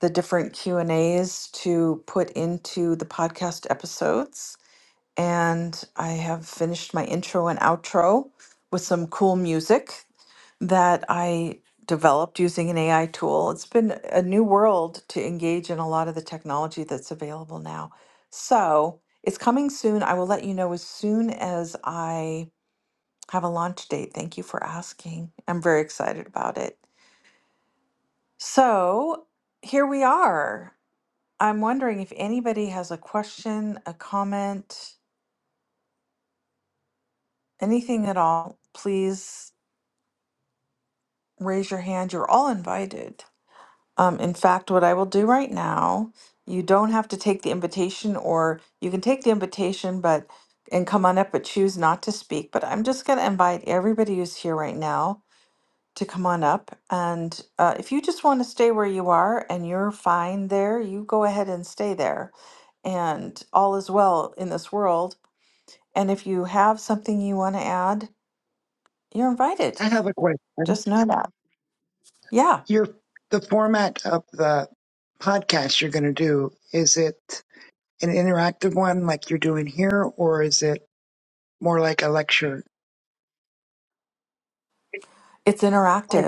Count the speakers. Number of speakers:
2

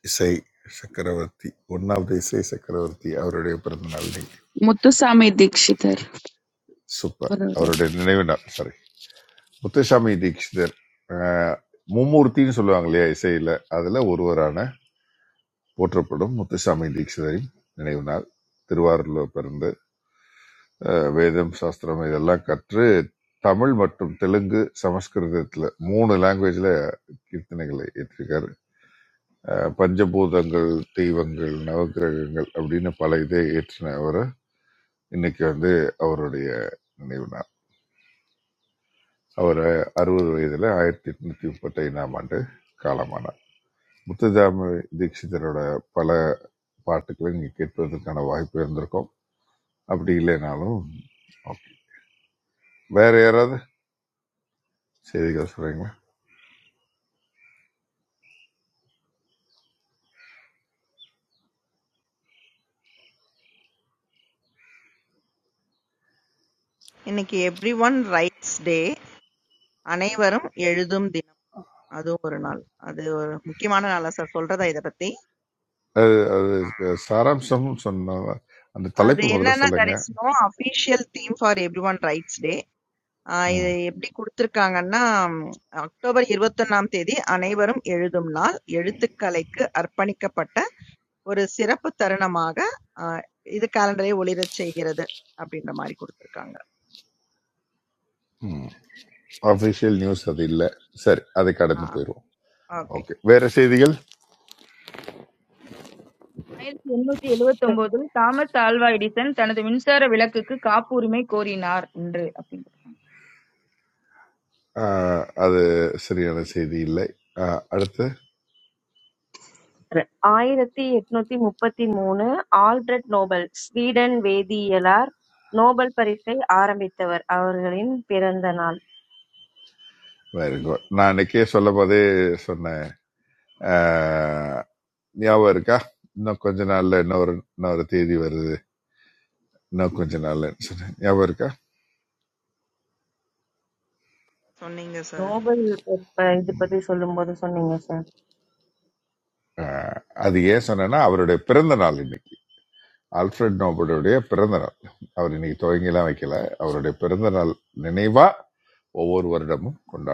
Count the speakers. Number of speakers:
5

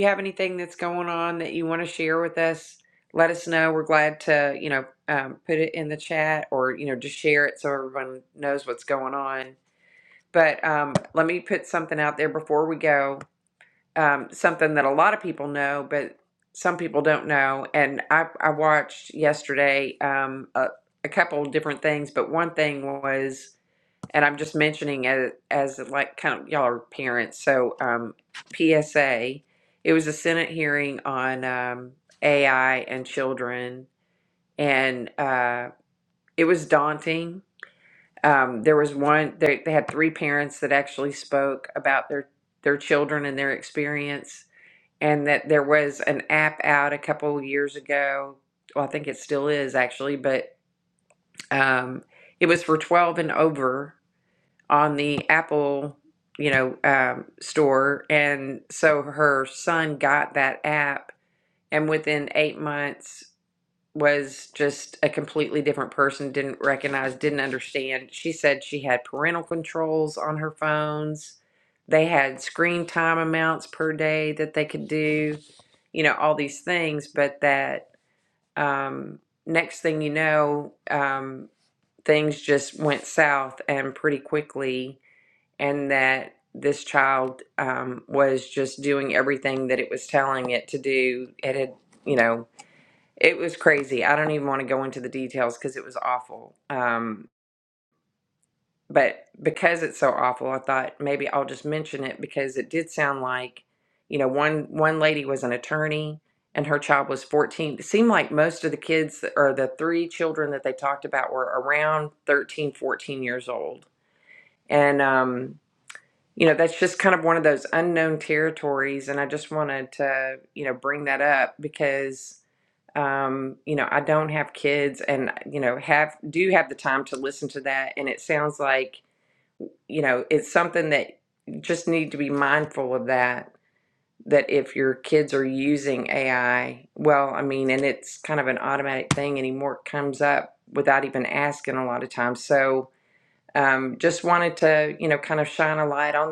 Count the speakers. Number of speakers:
1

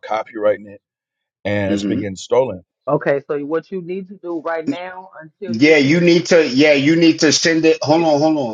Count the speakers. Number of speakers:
3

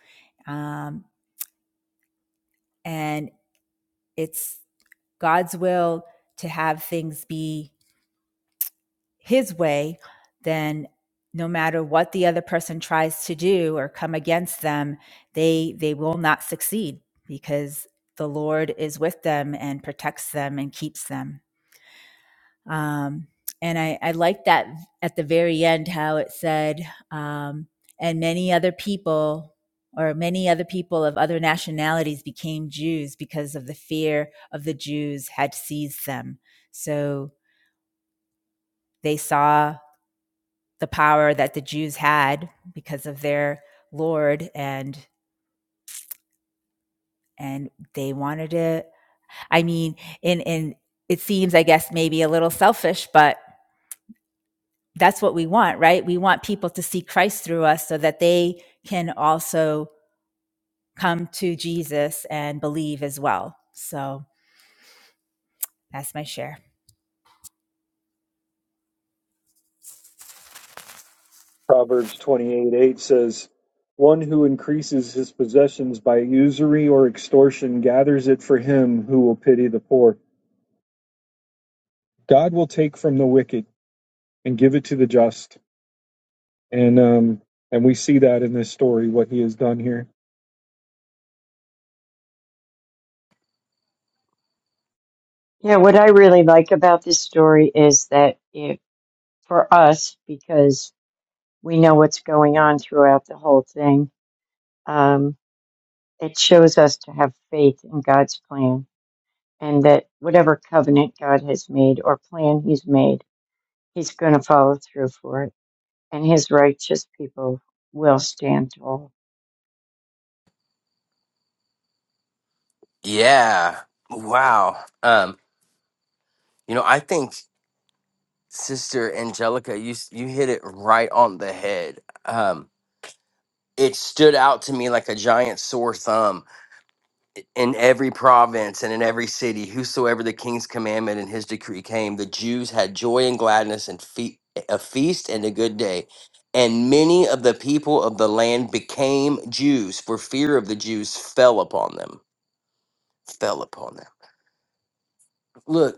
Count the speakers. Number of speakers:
4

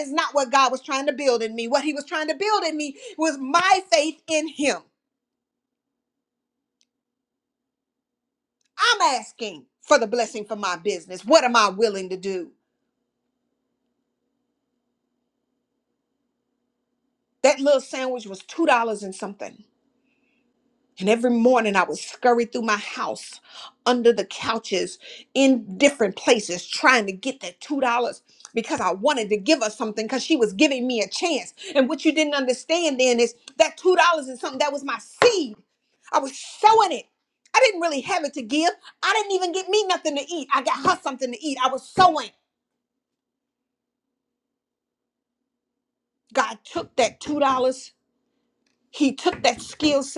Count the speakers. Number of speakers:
1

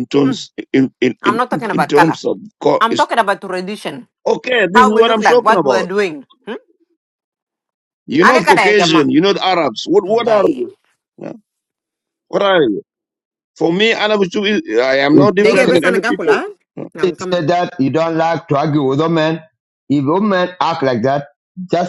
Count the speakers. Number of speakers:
3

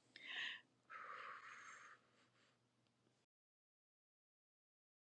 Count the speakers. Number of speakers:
0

